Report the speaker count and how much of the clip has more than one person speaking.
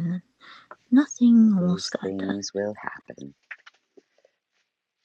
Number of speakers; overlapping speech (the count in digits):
2, about 15%